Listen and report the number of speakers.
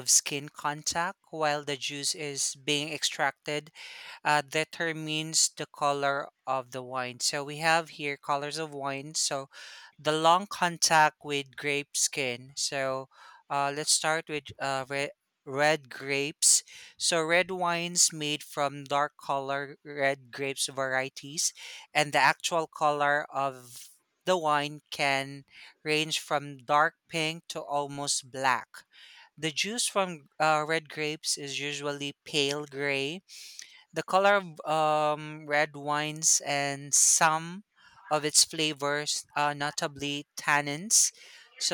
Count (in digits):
1